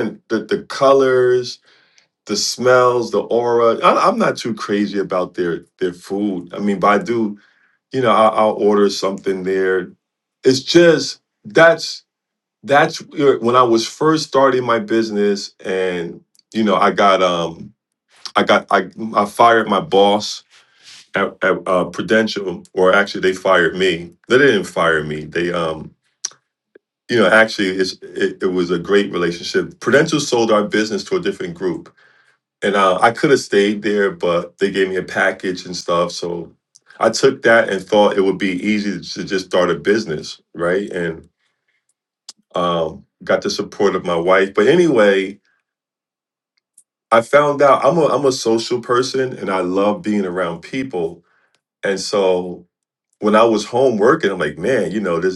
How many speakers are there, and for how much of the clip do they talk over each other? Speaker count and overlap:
one, no overlap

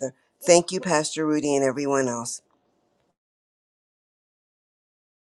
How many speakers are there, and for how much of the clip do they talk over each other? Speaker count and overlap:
one, no overlap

